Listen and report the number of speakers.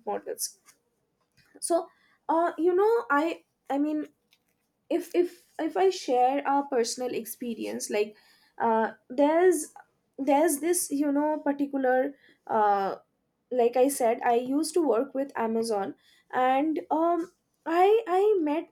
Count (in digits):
1